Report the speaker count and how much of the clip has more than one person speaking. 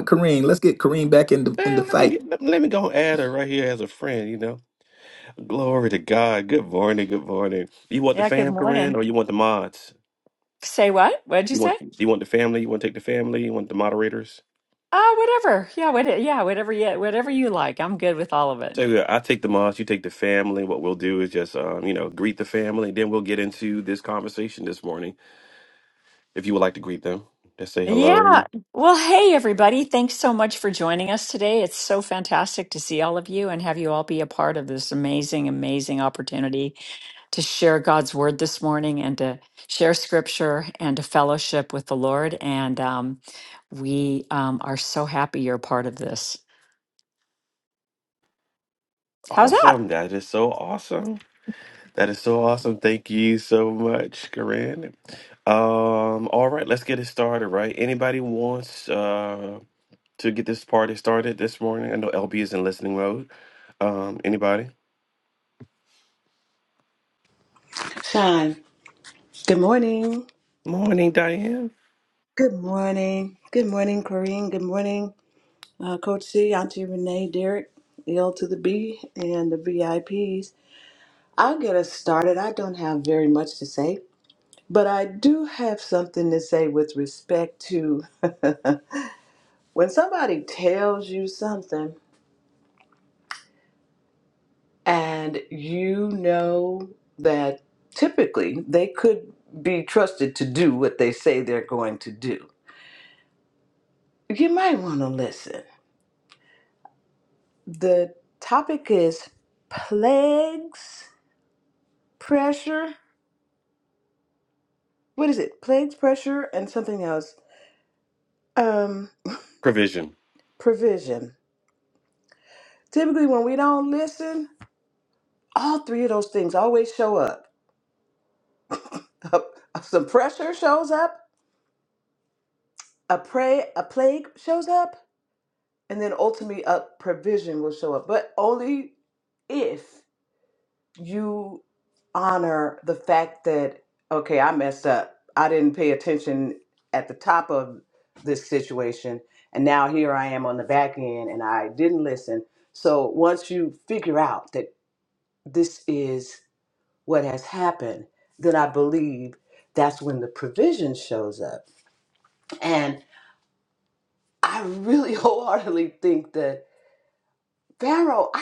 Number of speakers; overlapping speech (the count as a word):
four, about 2%